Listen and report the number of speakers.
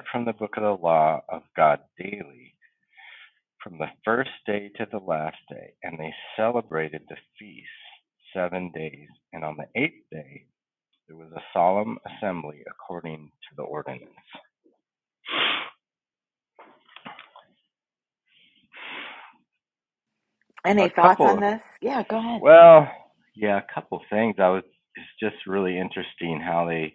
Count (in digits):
2